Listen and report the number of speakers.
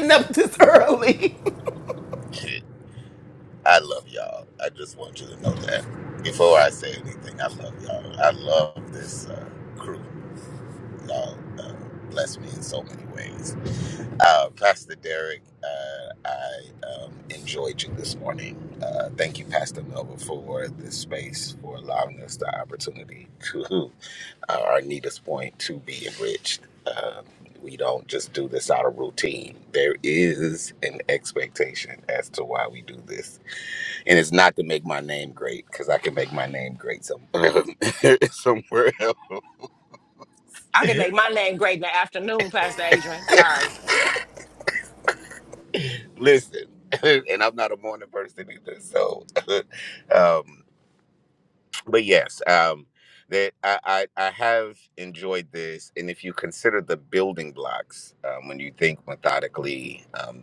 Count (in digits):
3